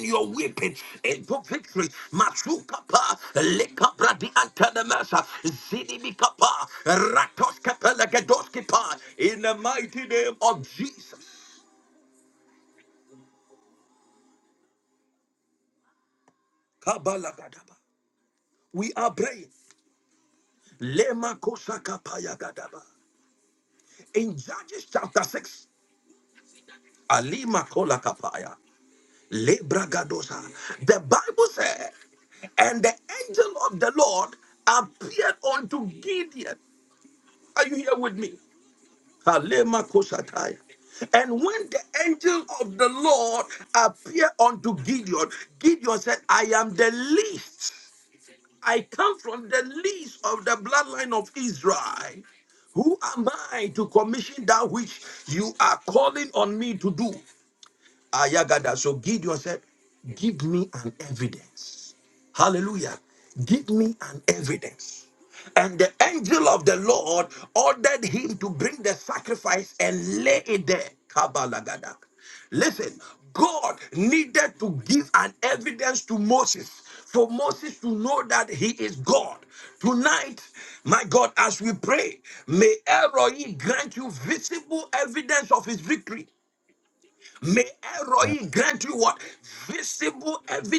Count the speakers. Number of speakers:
1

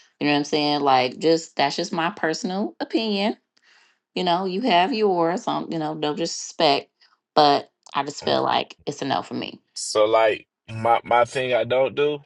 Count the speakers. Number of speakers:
2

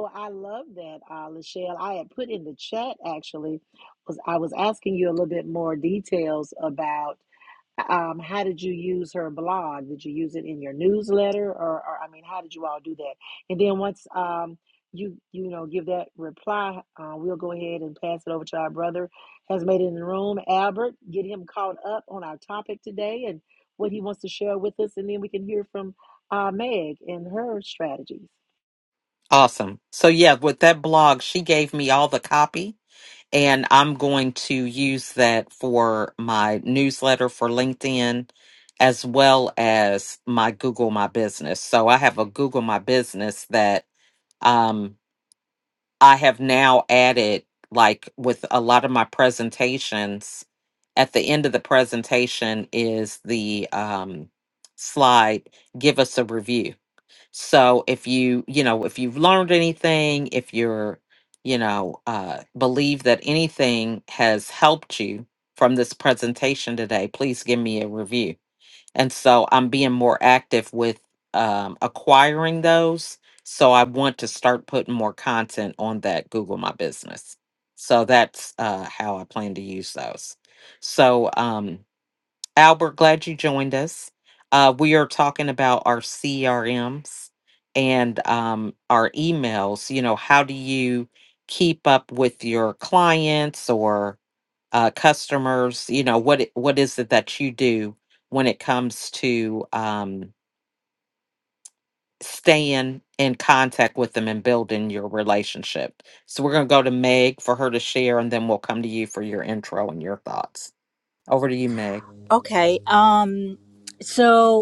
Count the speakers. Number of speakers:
3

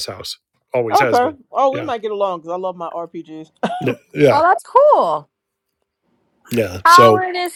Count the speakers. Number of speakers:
3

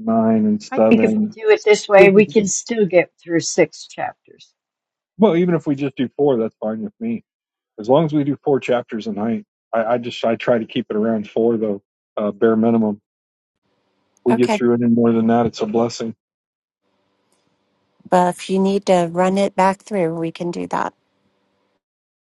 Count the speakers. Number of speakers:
3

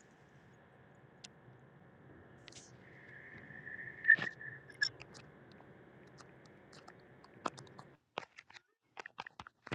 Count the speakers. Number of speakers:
0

